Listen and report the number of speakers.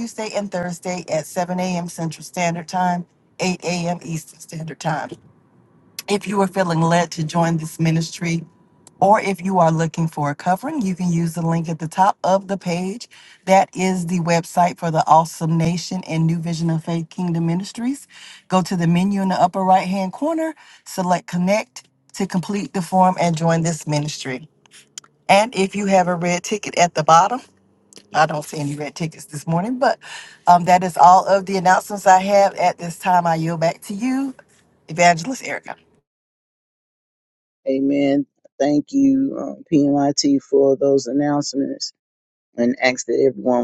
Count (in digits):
2